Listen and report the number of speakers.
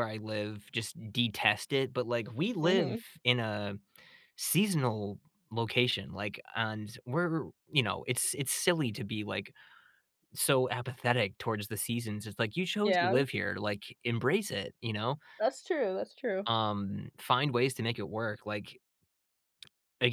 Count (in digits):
2